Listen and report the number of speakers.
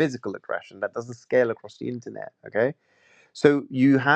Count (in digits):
1